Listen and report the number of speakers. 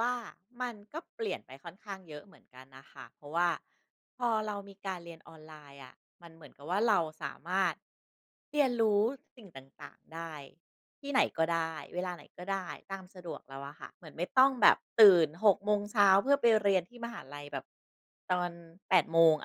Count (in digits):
1